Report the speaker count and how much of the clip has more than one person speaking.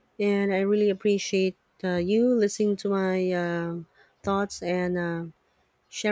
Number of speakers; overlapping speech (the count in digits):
1, no overlap